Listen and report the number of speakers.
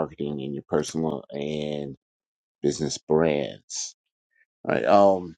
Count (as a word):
one